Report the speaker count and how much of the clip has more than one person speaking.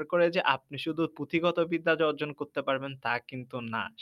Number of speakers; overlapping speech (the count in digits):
1, no overlap